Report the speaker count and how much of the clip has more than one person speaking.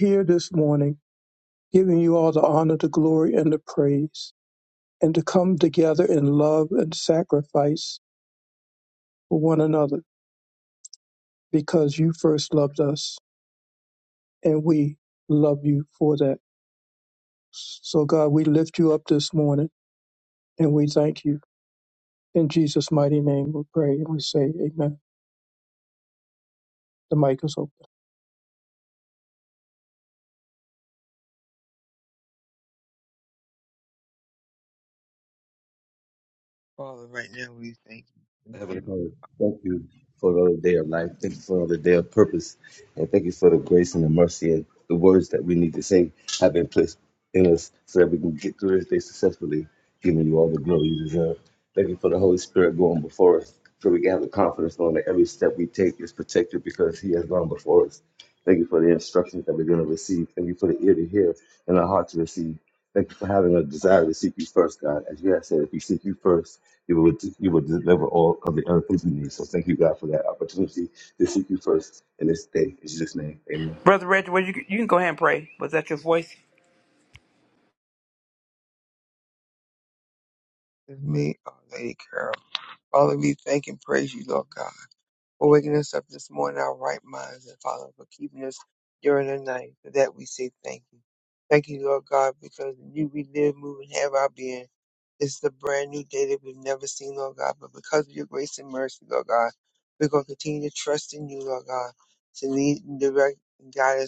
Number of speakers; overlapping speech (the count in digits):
4, under 1%